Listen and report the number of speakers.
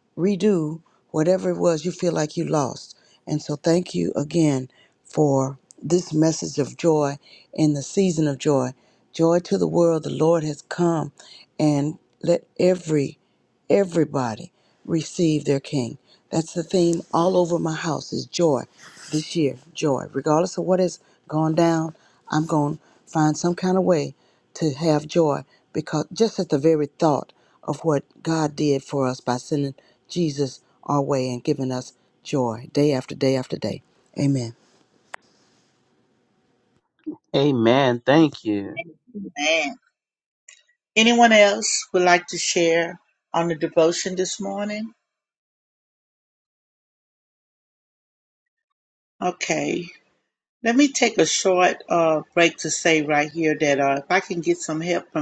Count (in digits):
3